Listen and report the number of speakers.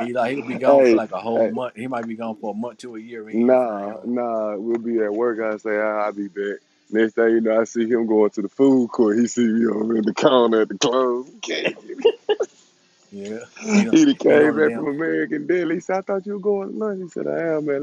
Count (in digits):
2